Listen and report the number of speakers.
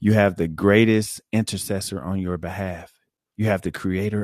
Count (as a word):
one